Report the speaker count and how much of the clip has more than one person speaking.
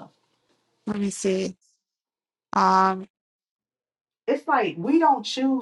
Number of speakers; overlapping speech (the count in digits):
2, no overlap